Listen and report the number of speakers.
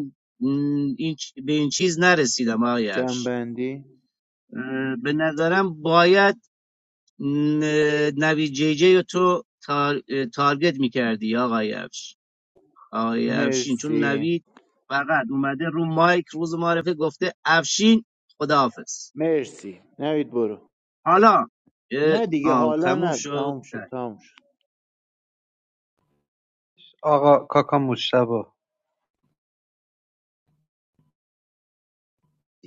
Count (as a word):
three